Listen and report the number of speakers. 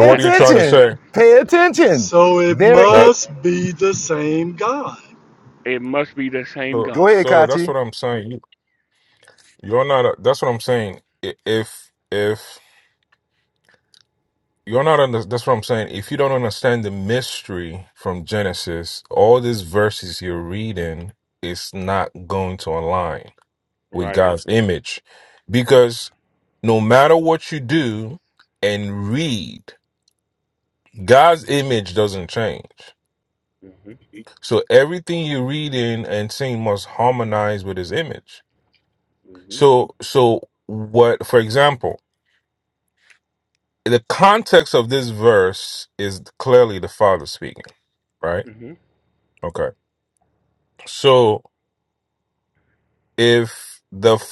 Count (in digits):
4